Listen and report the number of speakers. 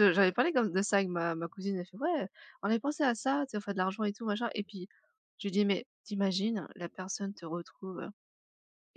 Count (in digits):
1